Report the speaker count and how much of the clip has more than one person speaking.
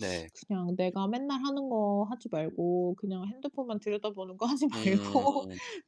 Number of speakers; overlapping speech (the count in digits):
2, about 14%